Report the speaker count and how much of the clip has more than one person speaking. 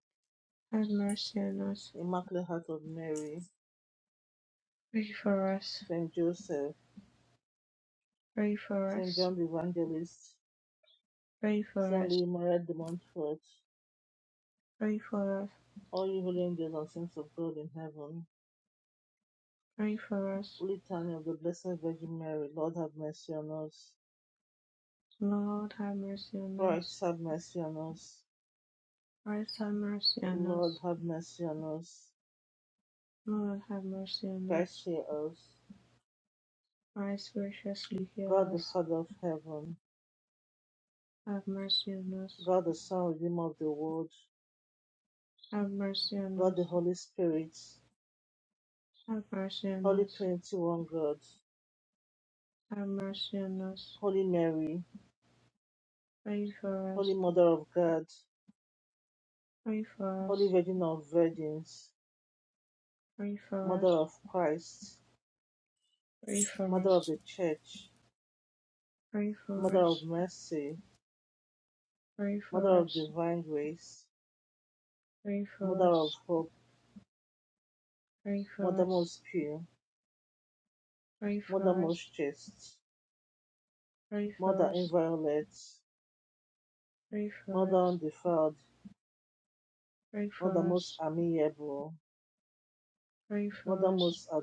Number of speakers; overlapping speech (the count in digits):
2, about 9%